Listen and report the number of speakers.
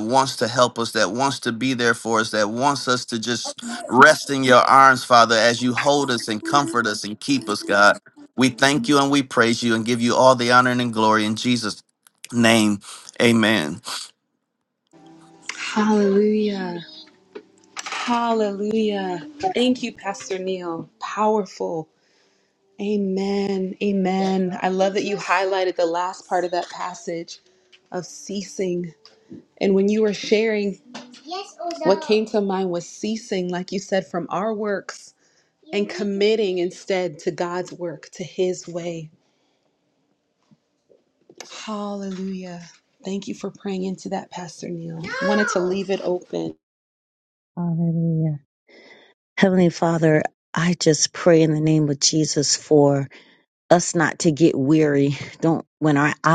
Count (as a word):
three